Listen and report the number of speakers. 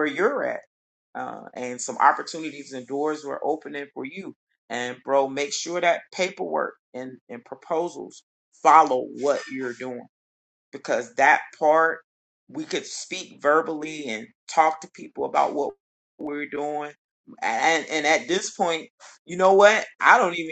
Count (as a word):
one